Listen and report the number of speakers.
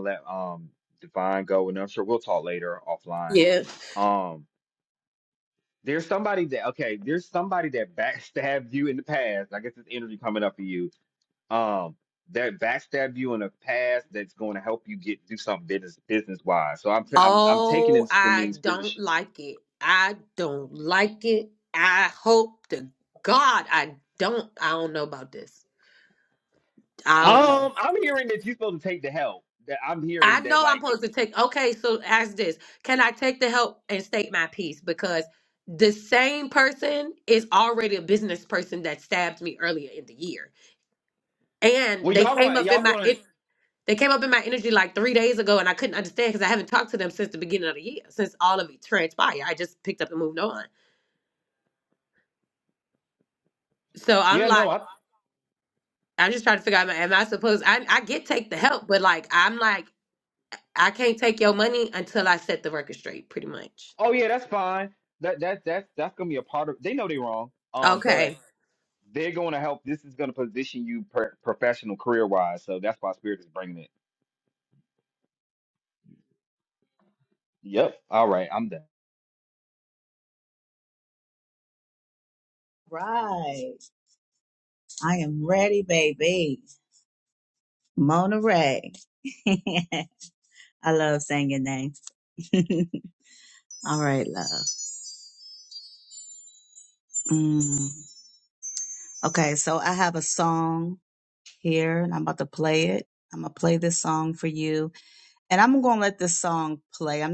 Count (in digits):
3